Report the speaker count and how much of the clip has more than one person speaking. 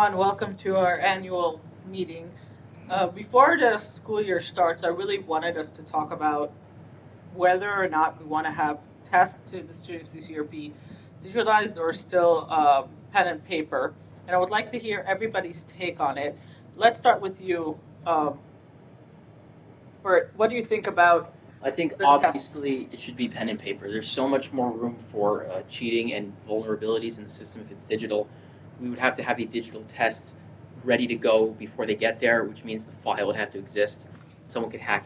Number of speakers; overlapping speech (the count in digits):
2, about 2%